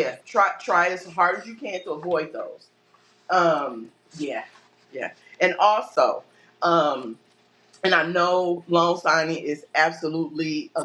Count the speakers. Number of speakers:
1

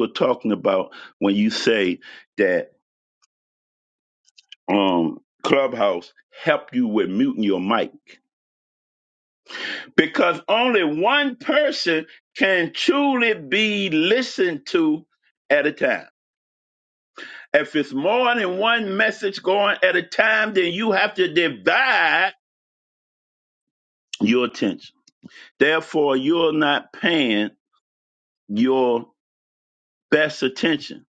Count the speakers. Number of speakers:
1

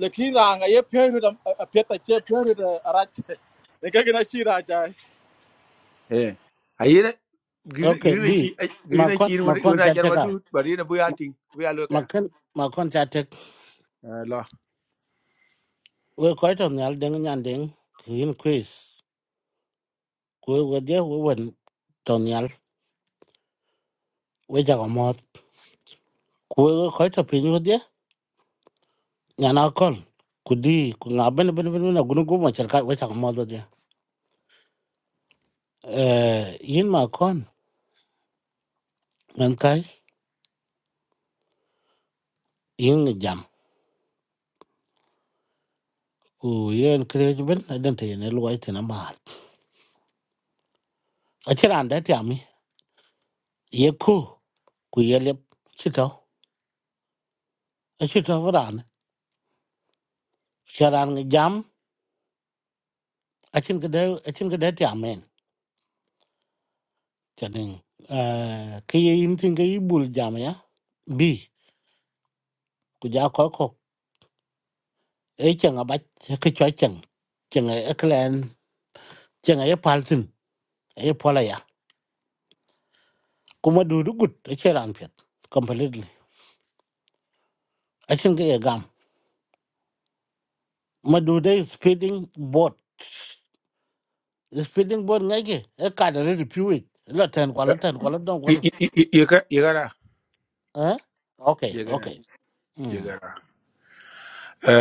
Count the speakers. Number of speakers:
3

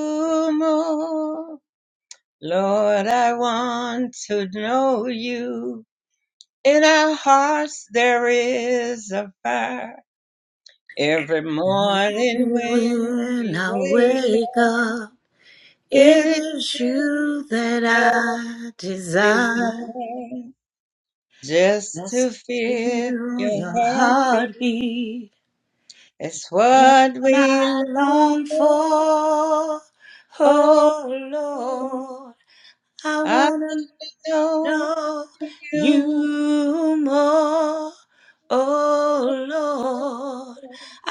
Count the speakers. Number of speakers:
2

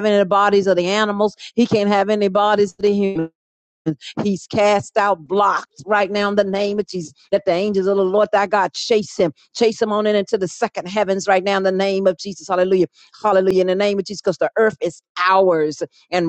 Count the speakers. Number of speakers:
1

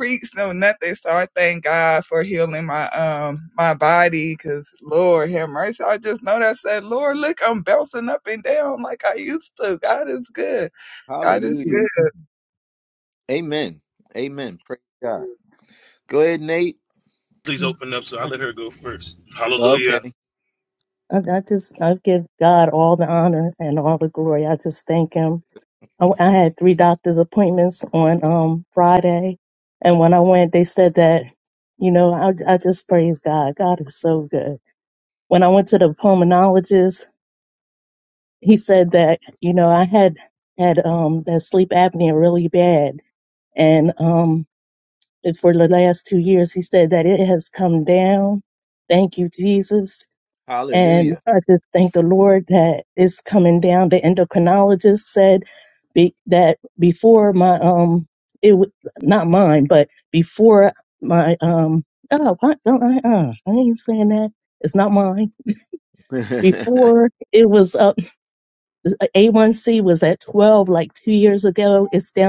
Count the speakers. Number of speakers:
4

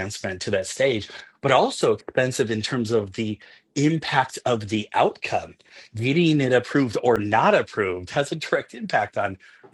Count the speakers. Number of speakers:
1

